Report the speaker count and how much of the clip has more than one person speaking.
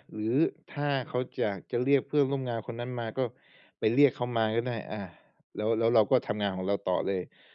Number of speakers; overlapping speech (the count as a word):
one, no overlap